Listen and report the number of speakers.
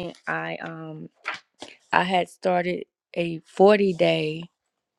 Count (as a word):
one